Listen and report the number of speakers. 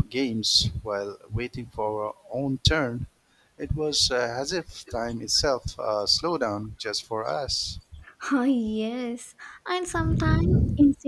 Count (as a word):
two